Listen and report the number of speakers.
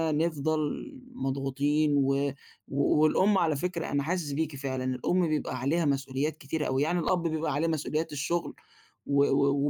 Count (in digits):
1